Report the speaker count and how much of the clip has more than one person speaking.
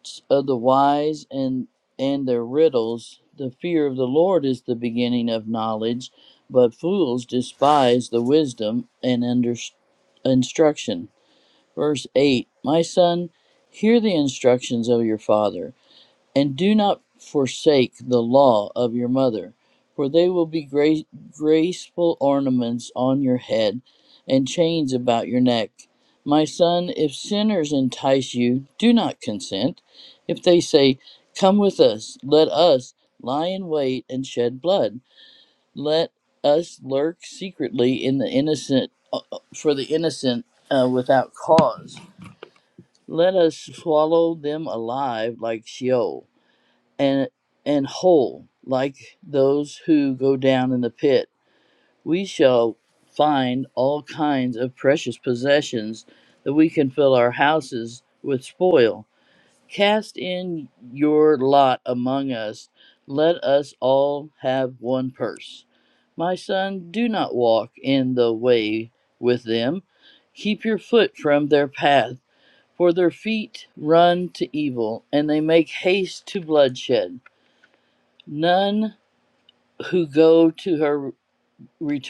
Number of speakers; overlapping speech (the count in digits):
1, no overlap